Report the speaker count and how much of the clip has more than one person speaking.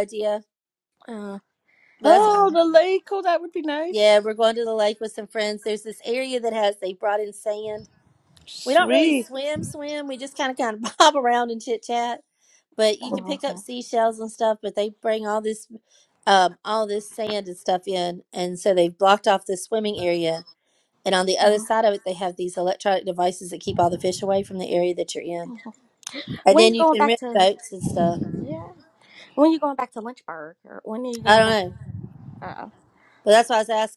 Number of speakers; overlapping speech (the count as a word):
three, about 9%